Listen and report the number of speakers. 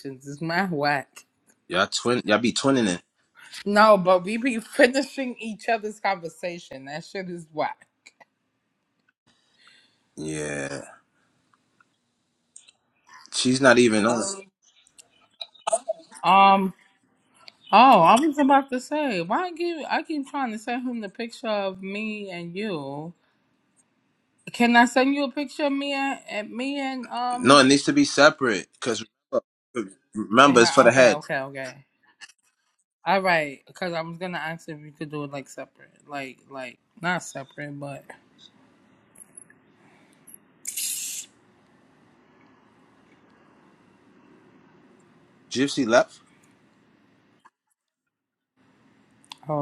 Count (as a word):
two